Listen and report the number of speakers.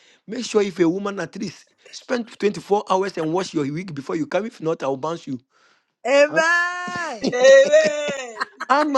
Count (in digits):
3